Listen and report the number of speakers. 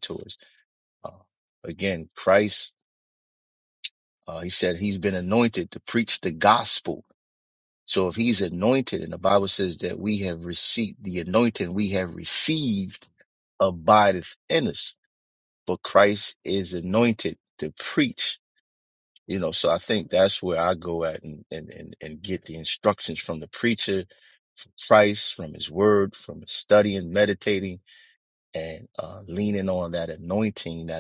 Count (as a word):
one